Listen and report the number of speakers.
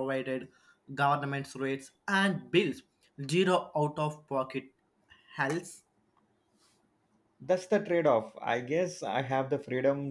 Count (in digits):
2